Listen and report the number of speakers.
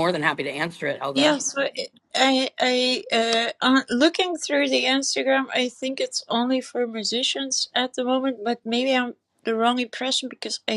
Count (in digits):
2